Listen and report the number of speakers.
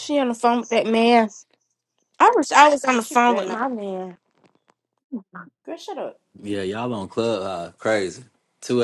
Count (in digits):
3